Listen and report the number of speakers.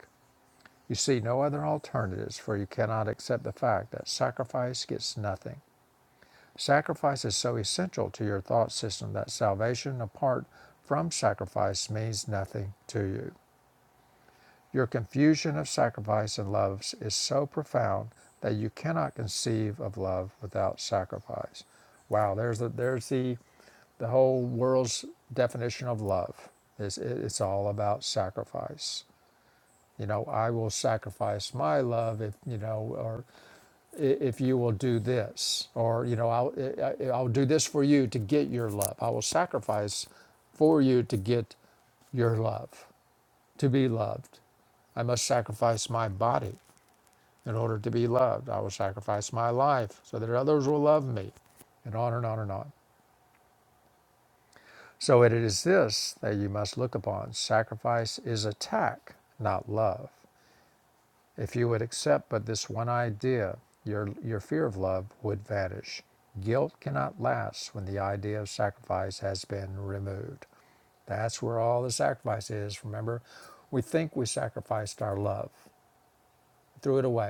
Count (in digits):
1